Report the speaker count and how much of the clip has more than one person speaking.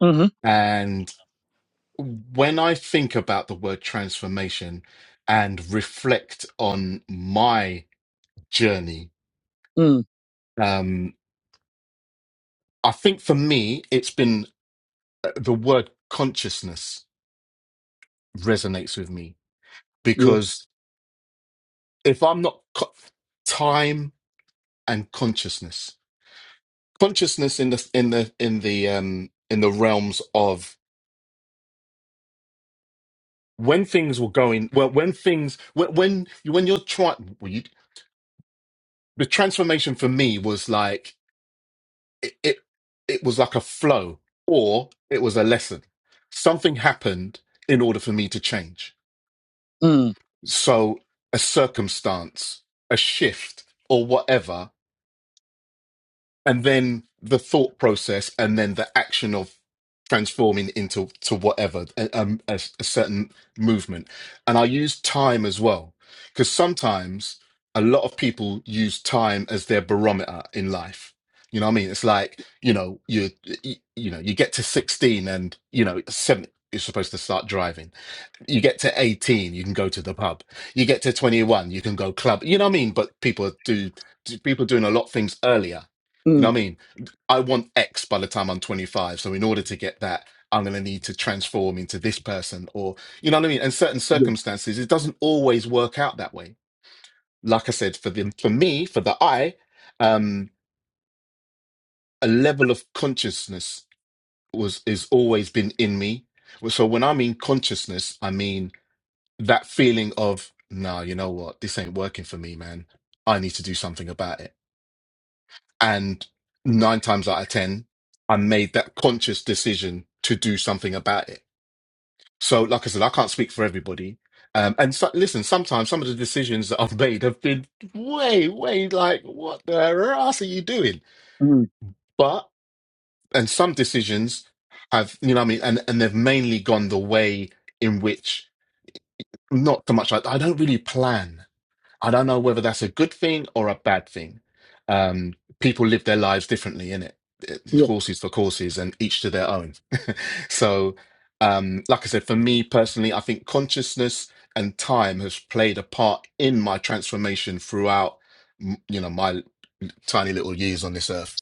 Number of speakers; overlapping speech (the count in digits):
2, under 1%